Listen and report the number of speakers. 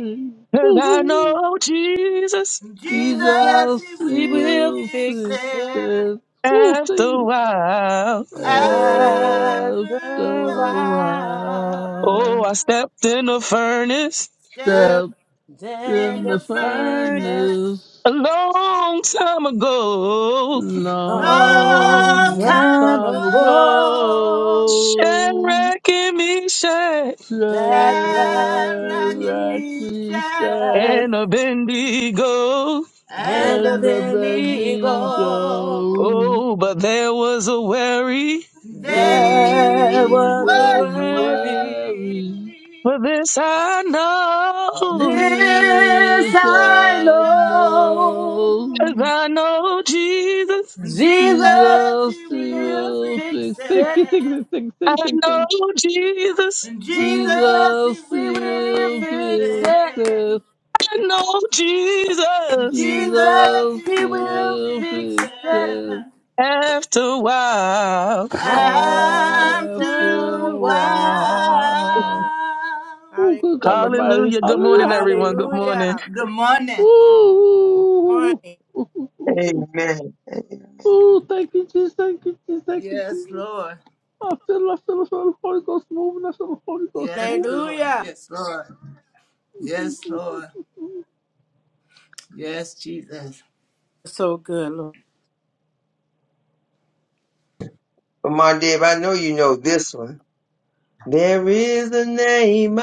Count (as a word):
five